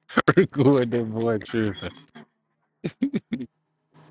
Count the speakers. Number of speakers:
1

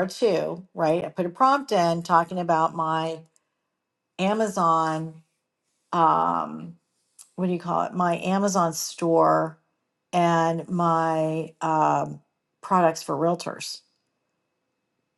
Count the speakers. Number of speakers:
1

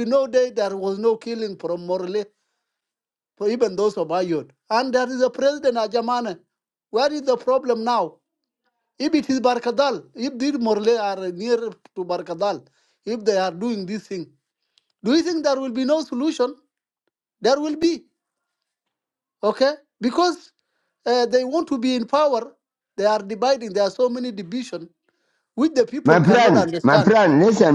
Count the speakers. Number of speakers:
2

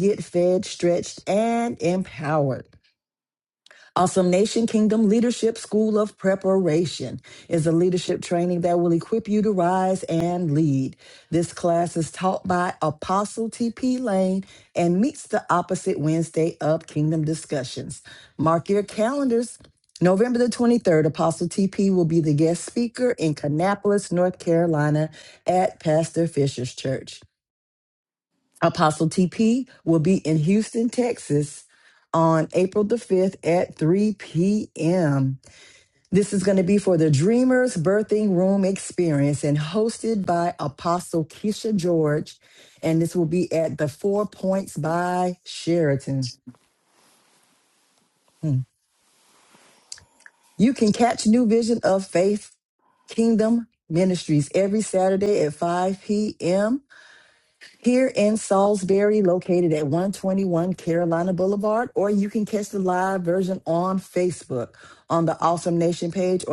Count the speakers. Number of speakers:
1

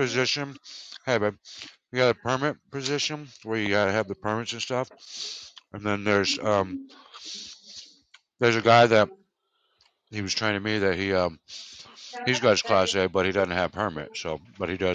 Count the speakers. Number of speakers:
1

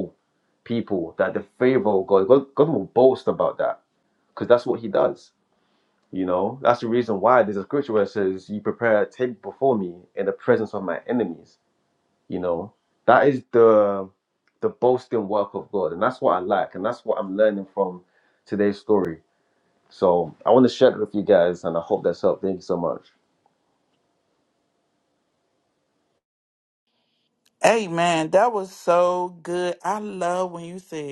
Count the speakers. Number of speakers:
2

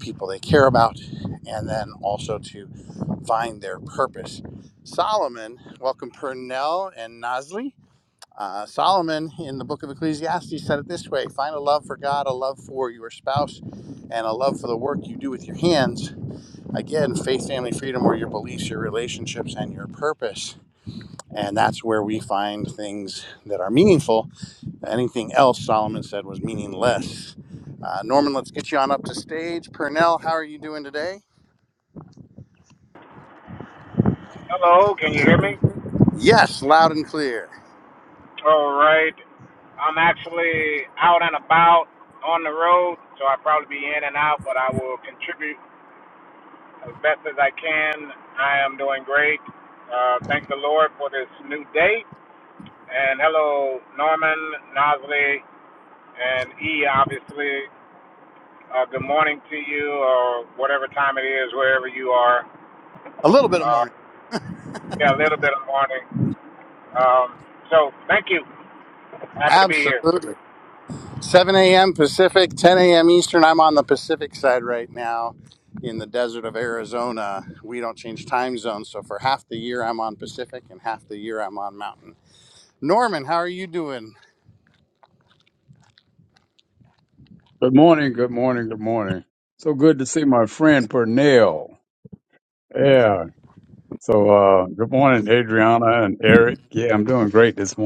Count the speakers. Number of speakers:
3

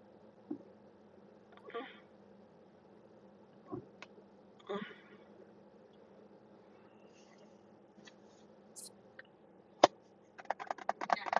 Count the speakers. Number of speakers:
0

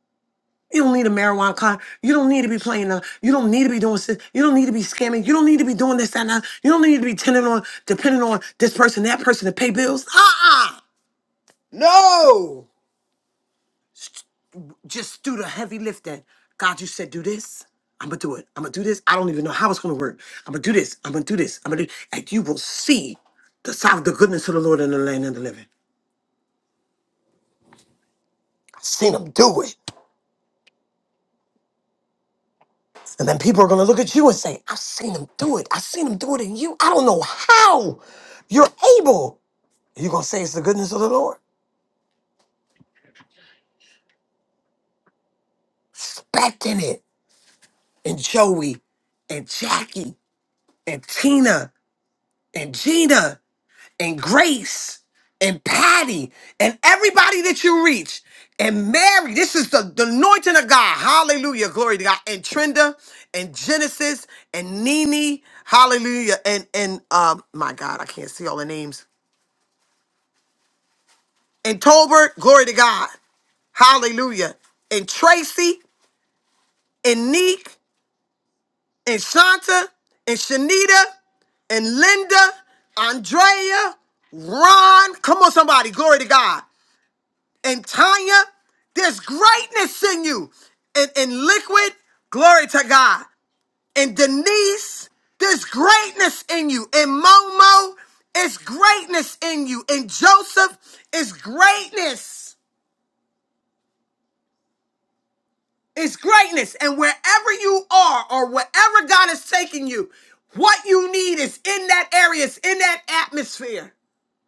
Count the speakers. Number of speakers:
1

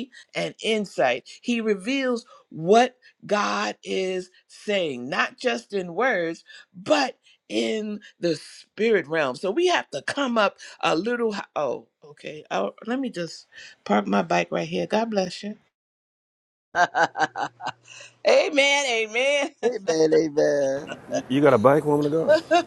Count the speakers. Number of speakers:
4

